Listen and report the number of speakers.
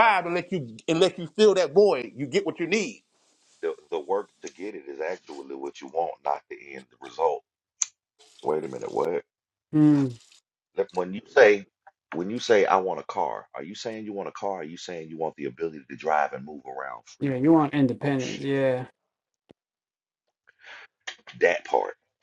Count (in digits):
3